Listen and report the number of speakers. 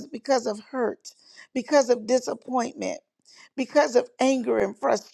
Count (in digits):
1